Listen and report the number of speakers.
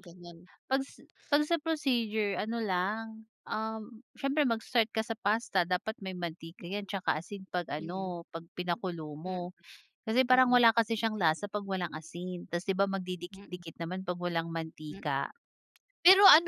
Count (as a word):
two